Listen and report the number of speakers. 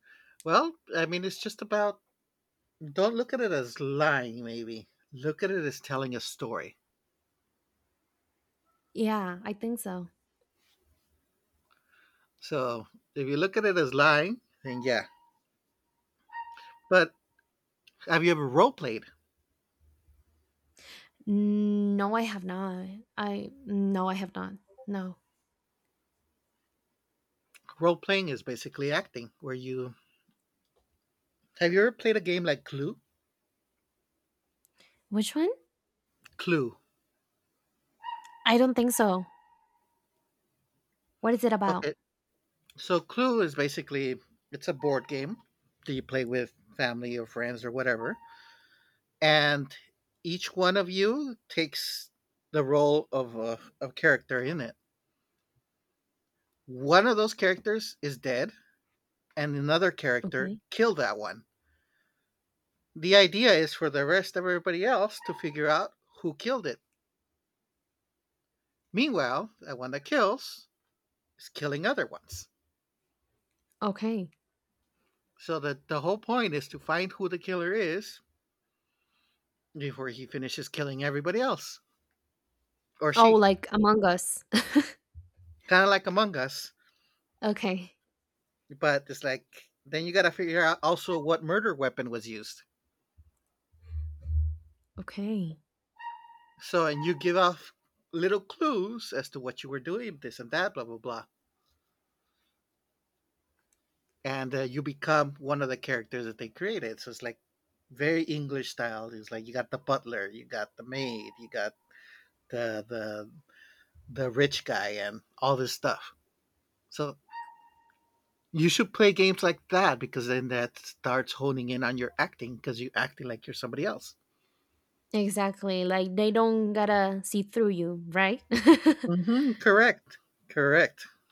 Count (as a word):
two